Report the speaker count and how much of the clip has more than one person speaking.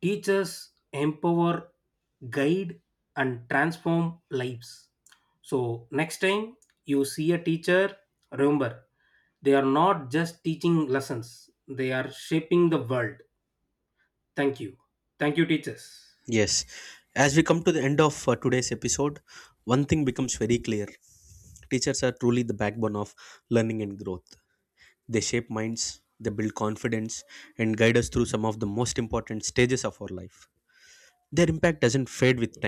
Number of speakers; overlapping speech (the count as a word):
two, no overlap